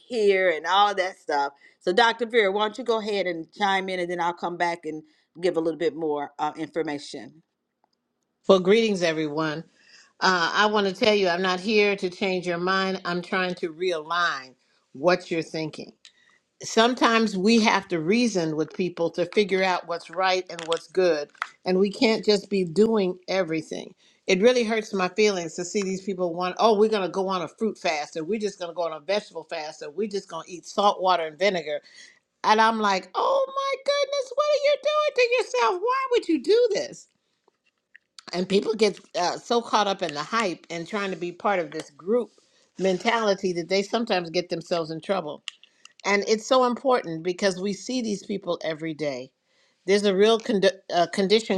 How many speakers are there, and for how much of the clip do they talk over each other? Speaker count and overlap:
two, no overlap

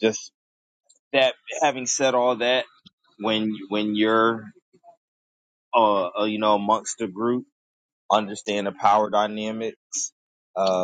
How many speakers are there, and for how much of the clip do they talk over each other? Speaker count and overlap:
one, no overlap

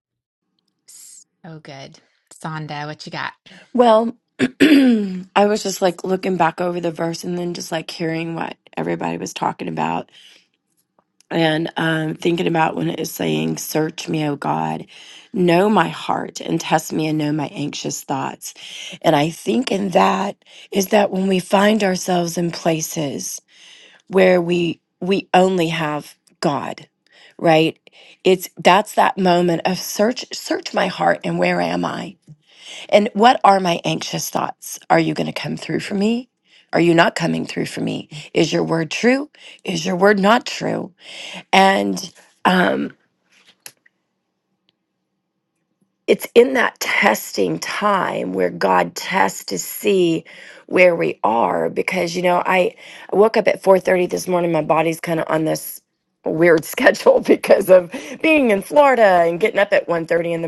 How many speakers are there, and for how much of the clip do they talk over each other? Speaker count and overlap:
two, no overlap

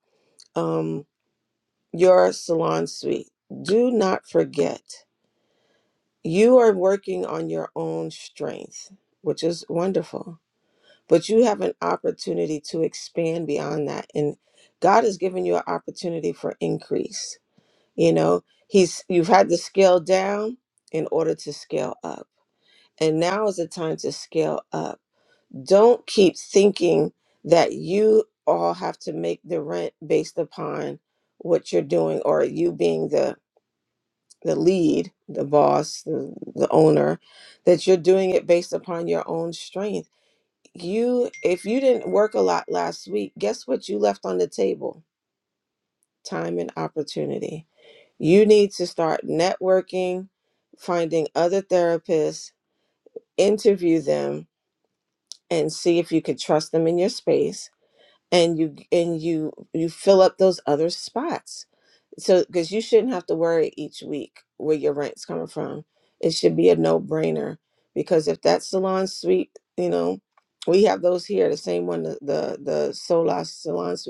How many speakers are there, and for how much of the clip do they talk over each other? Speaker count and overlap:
one, no overlap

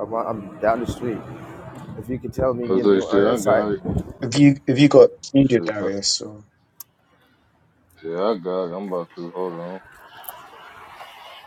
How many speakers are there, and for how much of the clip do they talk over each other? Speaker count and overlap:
three, about 13%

